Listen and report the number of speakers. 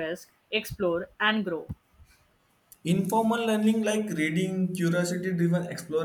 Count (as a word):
two